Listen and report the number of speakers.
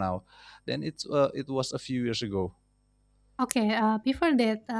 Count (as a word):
two